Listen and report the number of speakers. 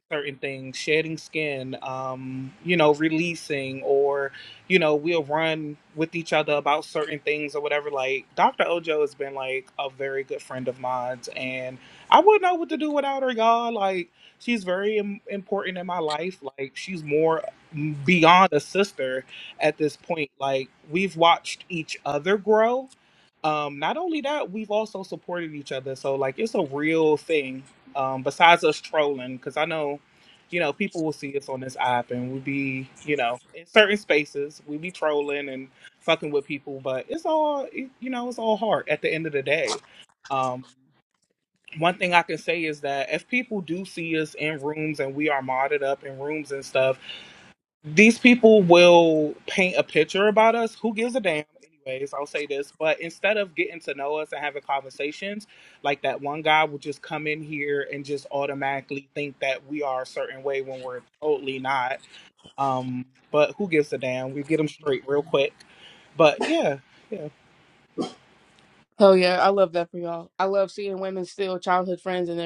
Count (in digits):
2